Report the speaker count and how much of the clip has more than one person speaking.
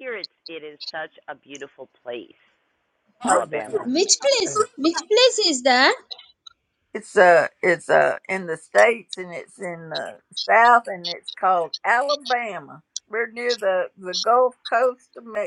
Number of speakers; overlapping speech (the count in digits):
3, about 4%